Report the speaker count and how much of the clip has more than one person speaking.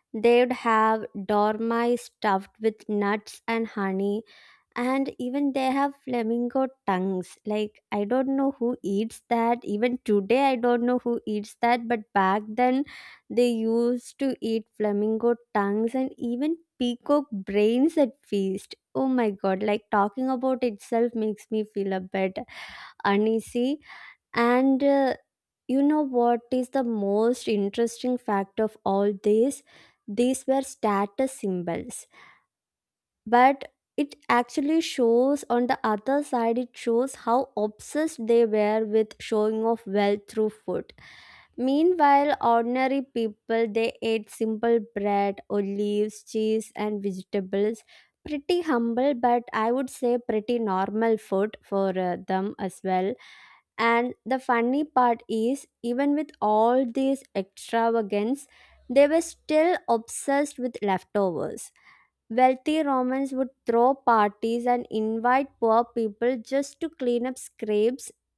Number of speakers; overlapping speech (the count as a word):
one, no overlap